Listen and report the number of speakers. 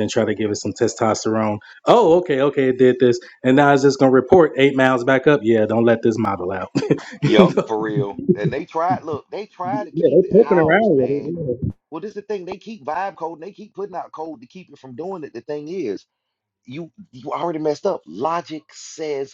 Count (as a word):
two